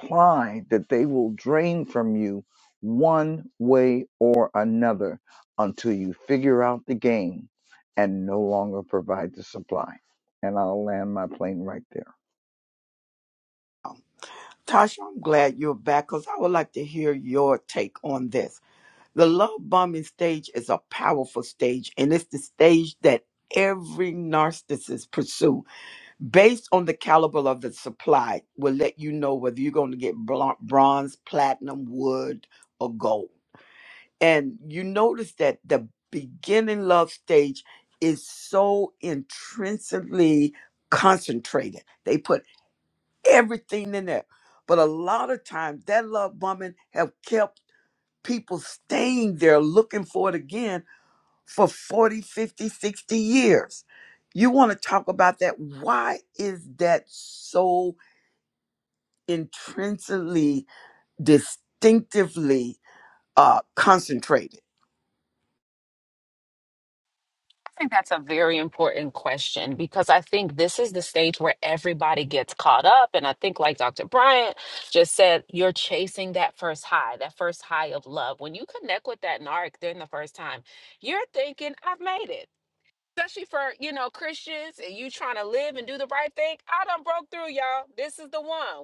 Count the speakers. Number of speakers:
three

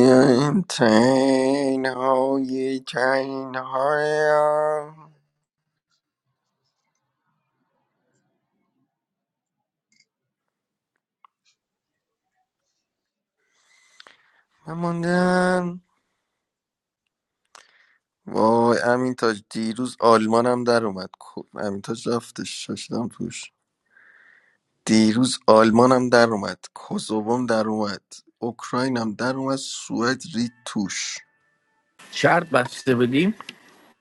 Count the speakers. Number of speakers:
two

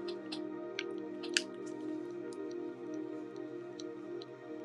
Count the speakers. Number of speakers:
zero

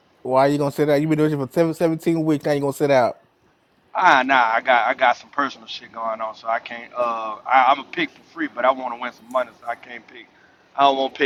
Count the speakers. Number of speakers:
two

